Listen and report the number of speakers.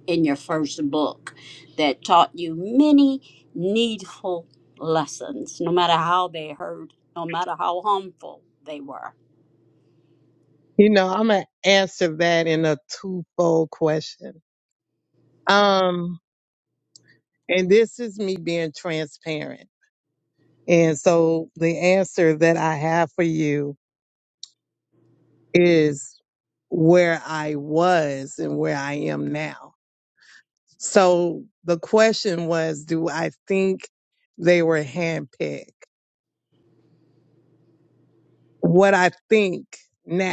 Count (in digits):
2